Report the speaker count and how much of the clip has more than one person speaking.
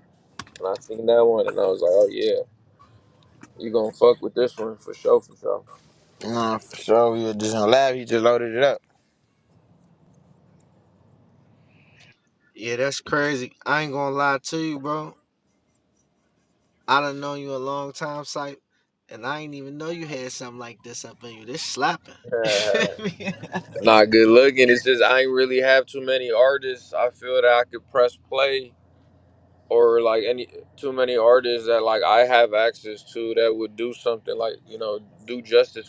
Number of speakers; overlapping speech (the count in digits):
3, no overlap